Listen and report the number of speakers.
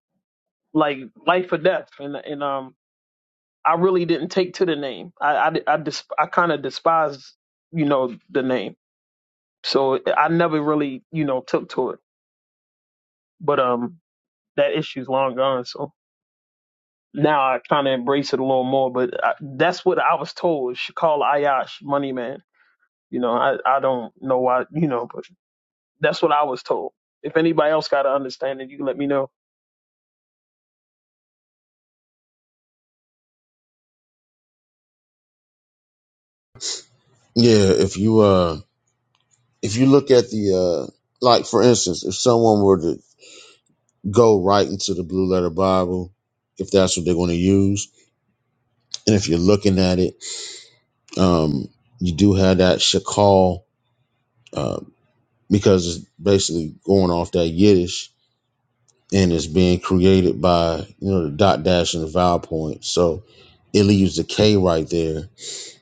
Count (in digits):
2